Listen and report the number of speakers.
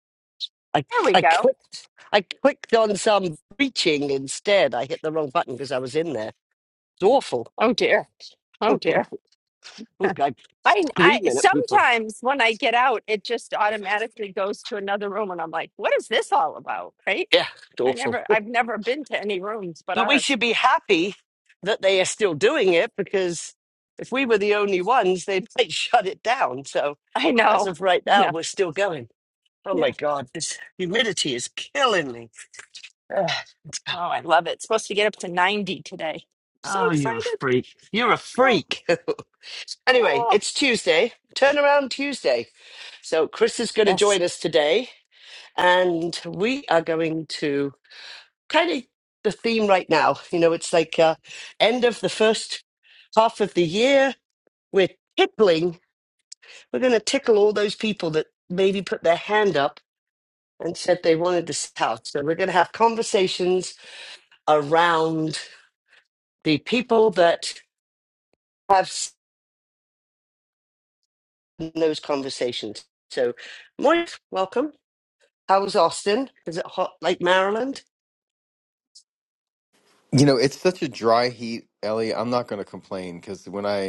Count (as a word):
three